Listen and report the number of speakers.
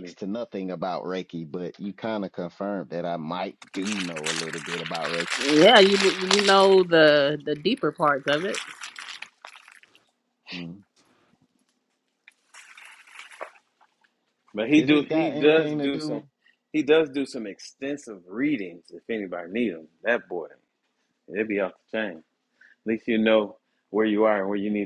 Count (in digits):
3